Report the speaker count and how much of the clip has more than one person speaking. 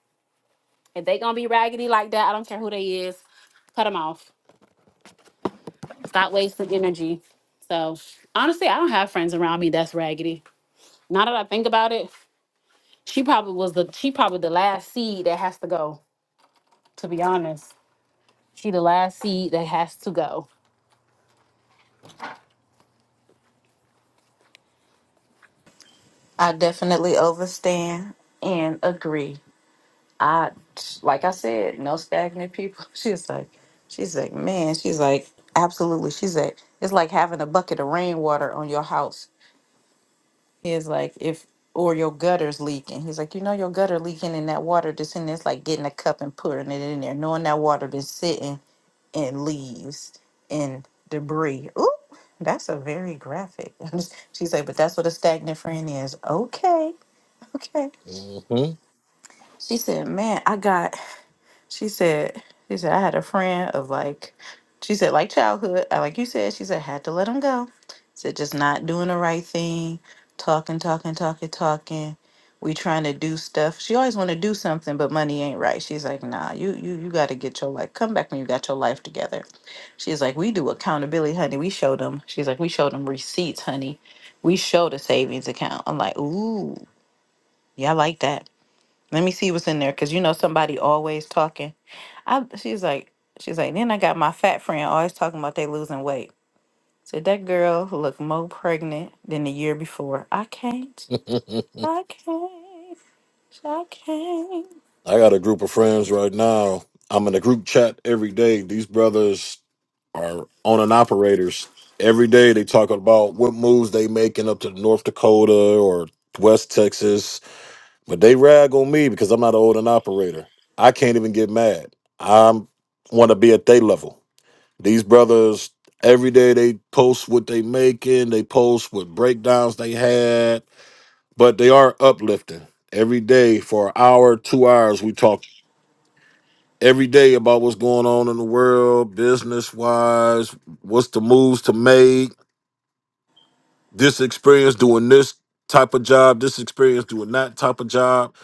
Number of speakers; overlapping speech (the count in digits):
3, no overlap